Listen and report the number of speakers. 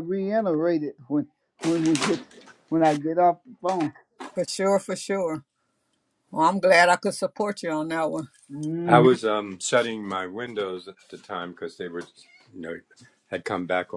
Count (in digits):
3